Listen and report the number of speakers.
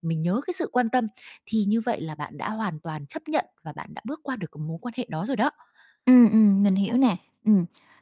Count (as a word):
two